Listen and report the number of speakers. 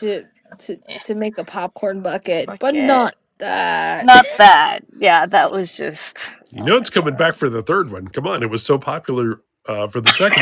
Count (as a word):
three